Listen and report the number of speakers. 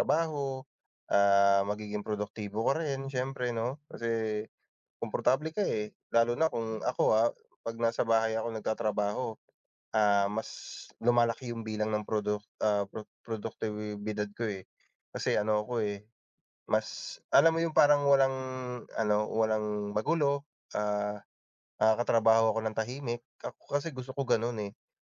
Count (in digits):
1